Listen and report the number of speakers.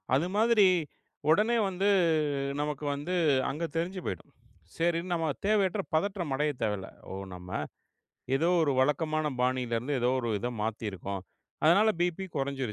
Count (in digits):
1